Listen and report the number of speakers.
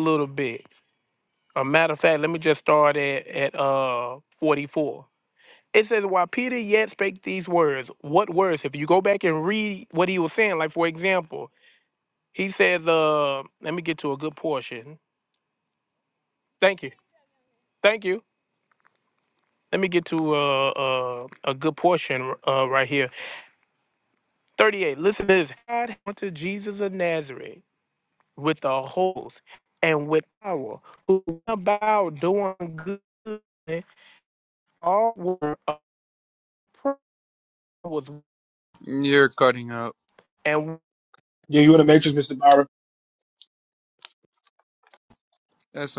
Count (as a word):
three